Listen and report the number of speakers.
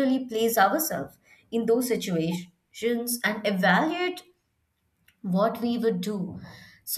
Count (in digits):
1